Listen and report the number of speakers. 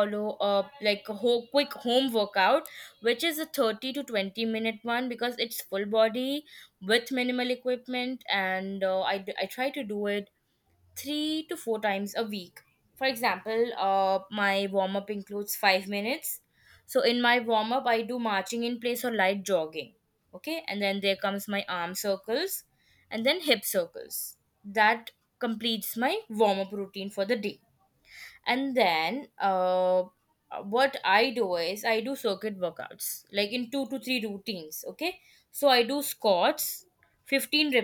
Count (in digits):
1